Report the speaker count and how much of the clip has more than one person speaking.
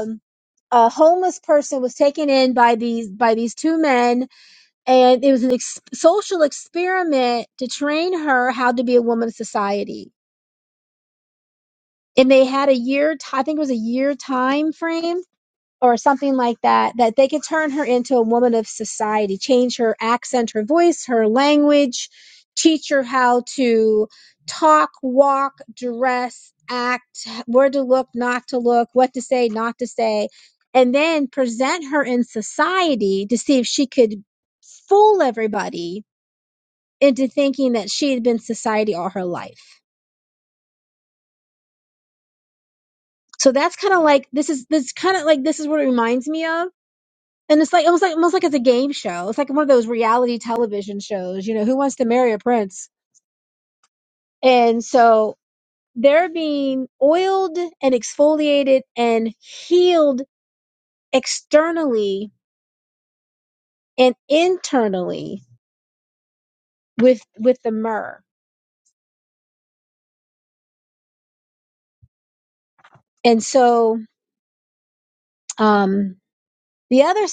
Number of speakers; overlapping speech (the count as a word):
one, no overlap